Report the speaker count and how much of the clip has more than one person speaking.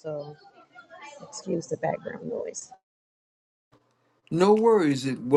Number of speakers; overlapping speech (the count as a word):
two, no overlap